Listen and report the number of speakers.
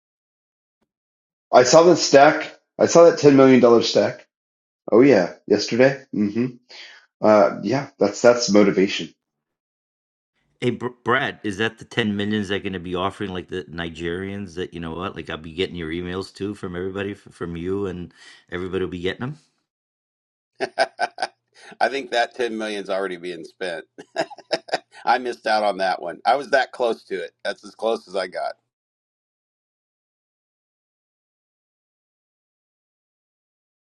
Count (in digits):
3